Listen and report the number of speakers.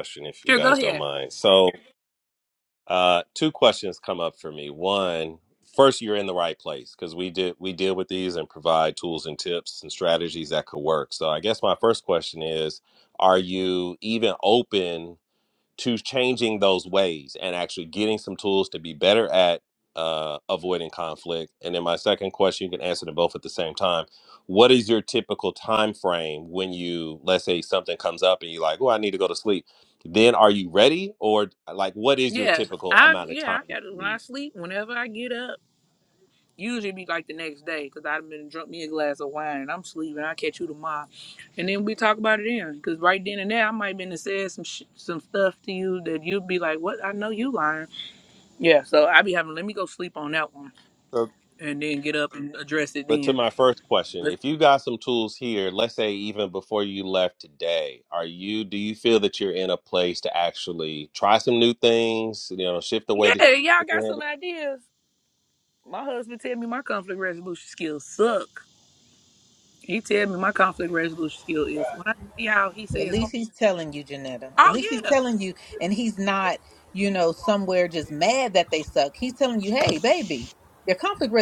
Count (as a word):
three